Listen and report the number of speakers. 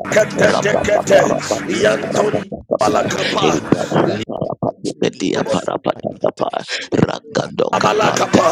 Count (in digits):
3